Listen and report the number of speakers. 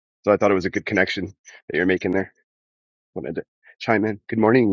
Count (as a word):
one